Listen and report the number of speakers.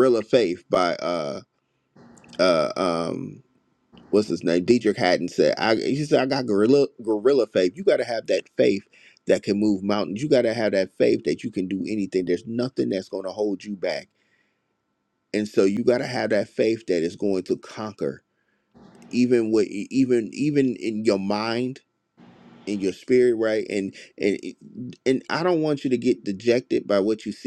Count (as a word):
one